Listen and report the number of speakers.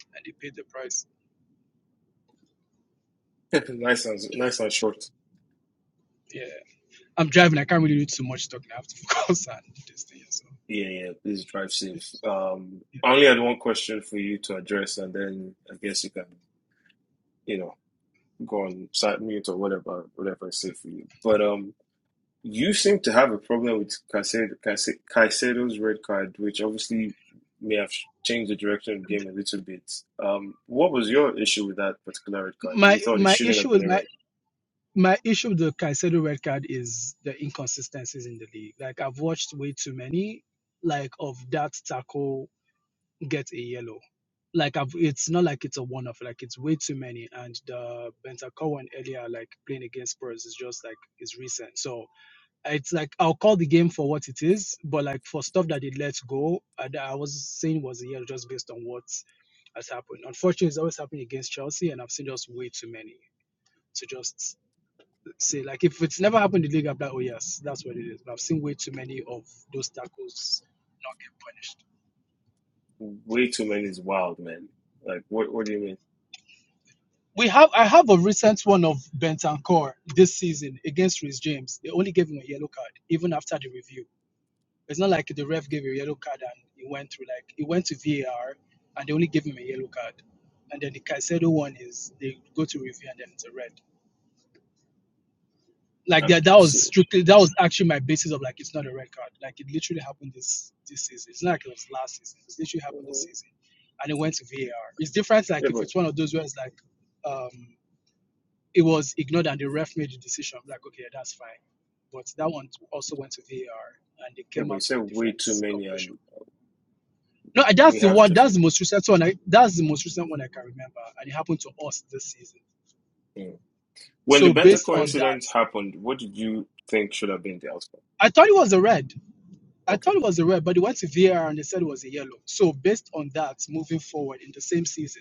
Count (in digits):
2